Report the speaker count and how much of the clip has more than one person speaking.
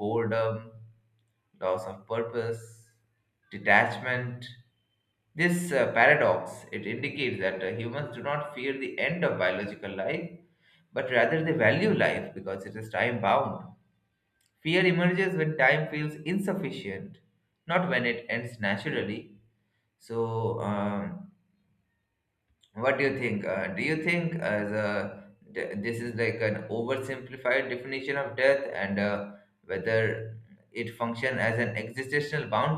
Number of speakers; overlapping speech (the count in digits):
1, no overlap